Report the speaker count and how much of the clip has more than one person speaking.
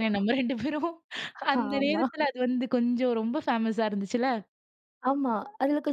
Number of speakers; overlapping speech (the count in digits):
2, about 10%